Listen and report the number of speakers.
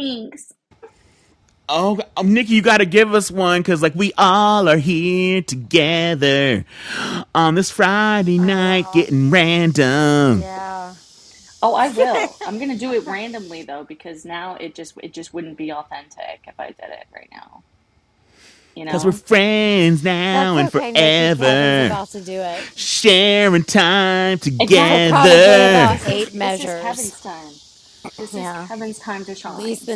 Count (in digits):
3